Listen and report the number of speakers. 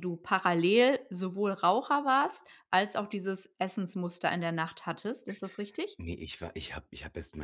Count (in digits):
2